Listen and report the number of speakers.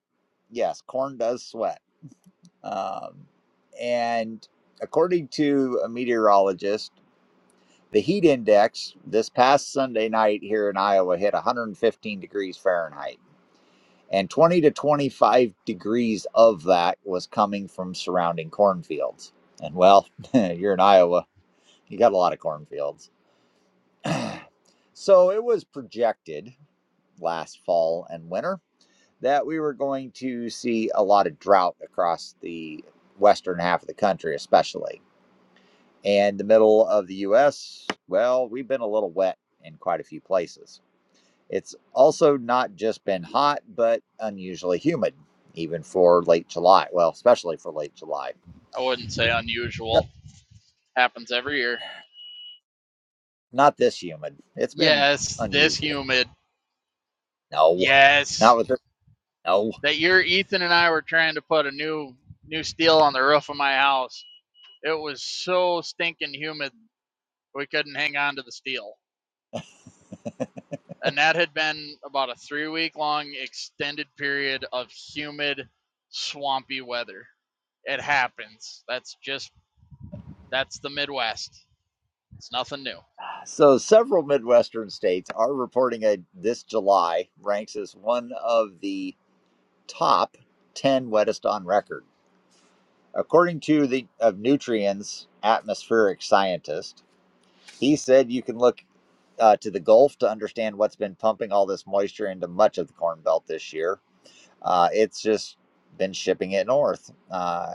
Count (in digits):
2